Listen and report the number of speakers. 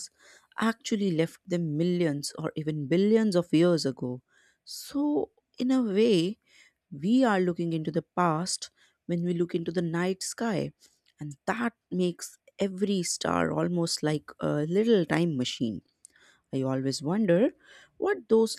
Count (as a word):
one